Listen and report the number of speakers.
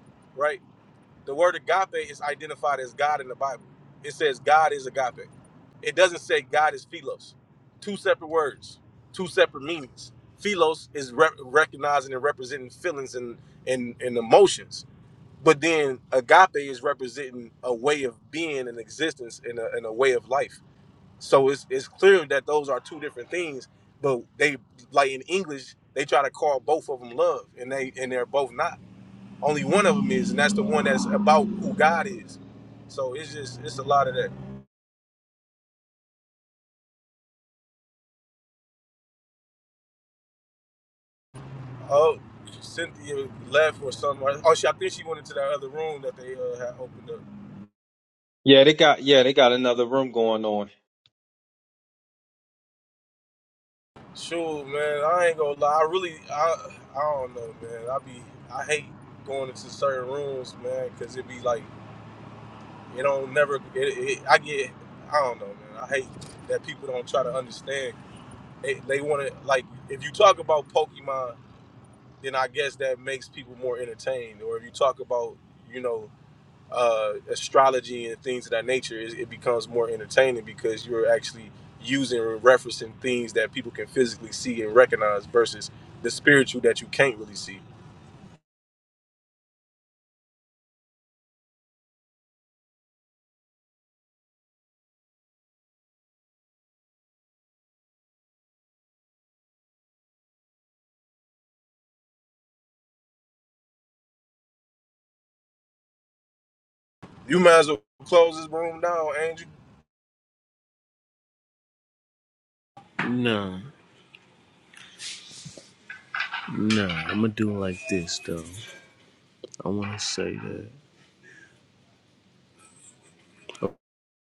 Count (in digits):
3